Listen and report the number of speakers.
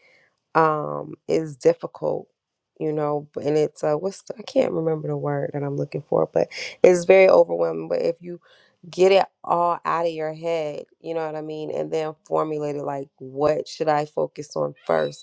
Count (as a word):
one